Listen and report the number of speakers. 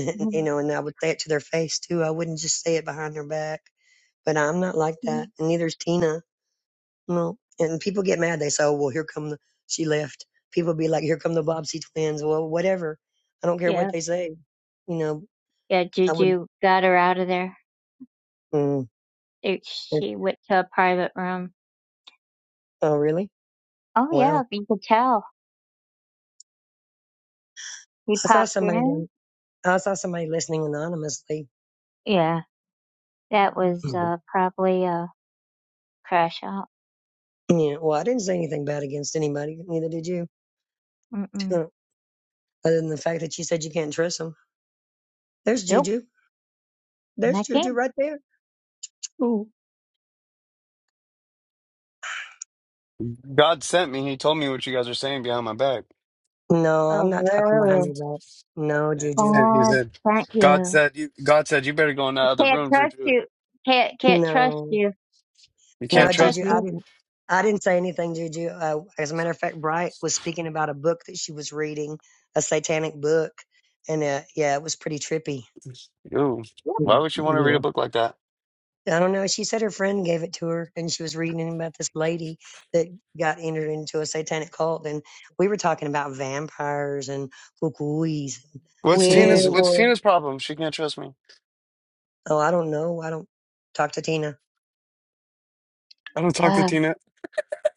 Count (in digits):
3